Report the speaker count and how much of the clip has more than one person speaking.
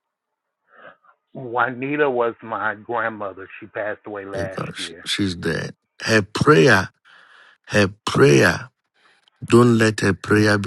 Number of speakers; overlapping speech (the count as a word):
two, about 8%